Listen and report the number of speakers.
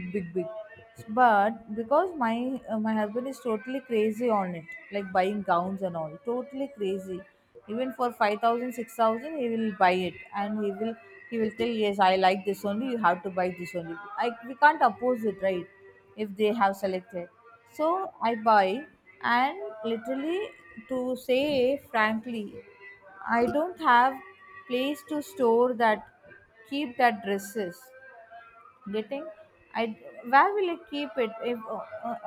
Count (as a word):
one